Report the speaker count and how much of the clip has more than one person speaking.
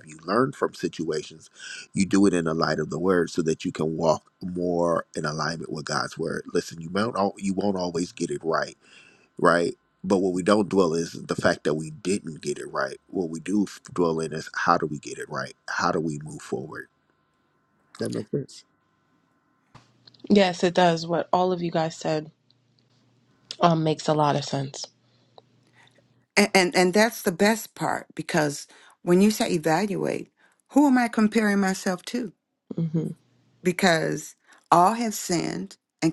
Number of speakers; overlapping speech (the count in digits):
3, no overlap